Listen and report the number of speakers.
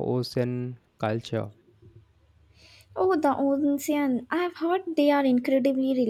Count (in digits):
2